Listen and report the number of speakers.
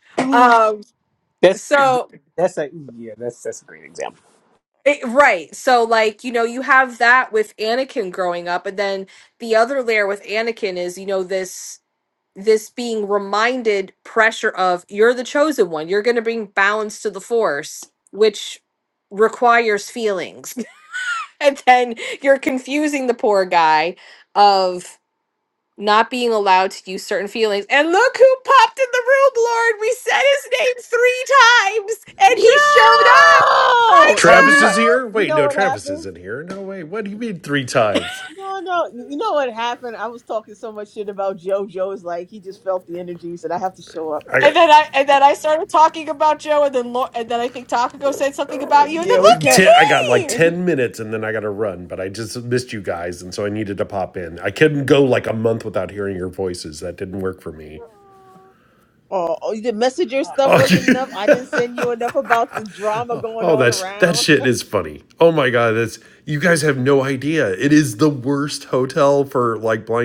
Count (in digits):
4